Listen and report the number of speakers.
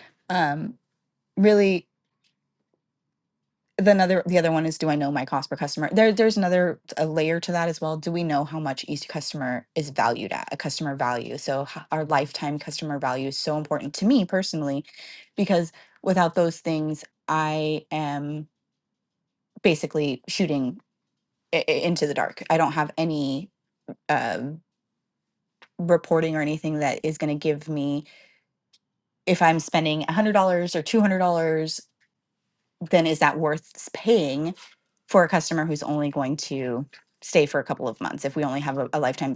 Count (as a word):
one